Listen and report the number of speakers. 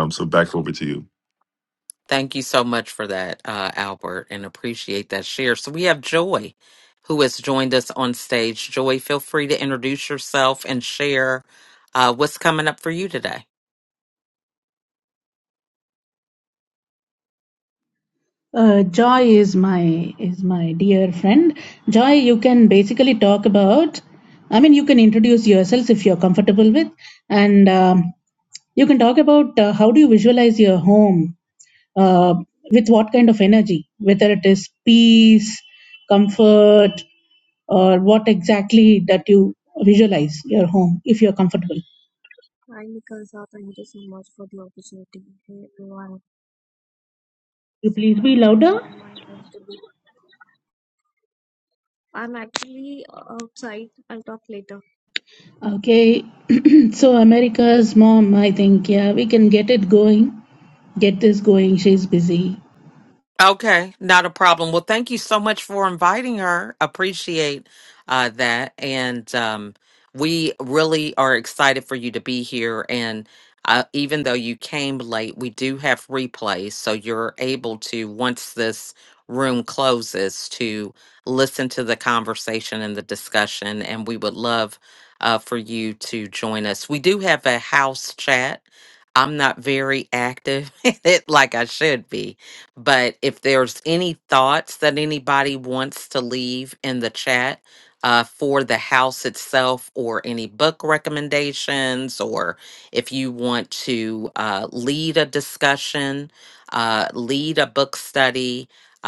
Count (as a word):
four